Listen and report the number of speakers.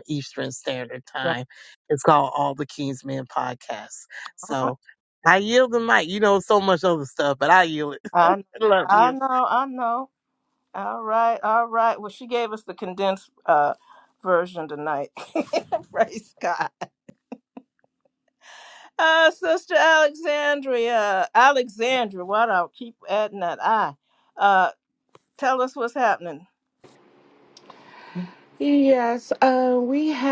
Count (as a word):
three